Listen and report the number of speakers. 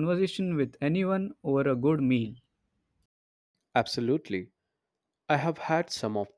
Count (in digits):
2